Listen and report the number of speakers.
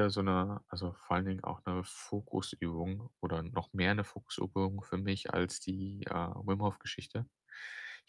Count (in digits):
1